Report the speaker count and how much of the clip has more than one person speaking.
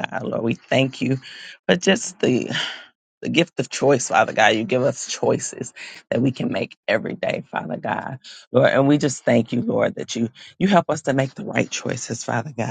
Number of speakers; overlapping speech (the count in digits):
1, no overlap